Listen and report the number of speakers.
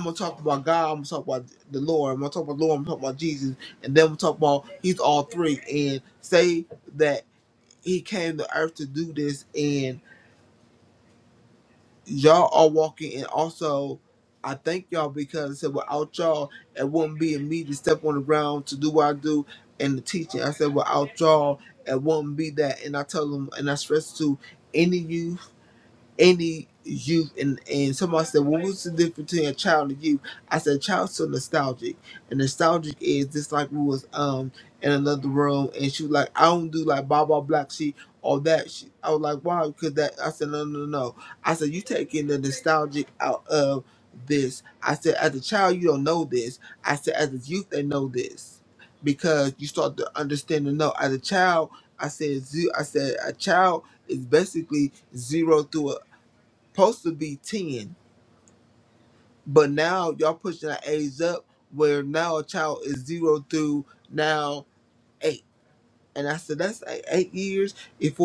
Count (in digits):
1